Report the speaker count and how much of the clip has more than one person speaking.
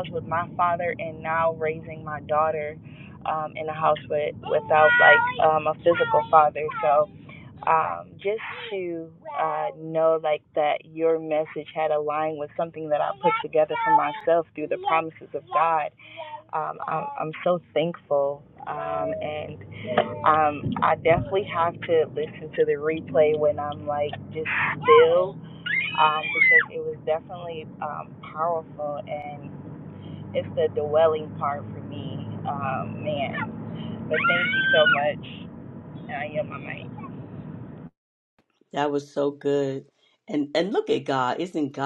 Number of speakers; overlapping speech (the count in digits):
2, no overlap